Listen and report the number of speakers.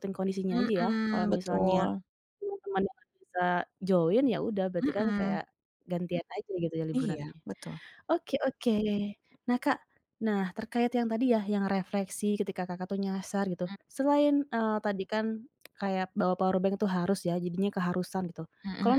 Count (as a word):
two